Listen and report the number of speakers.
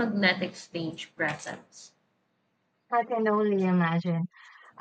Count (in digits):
2